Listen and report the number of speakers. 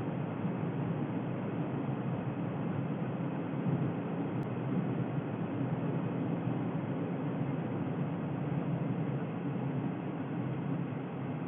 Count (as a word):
zero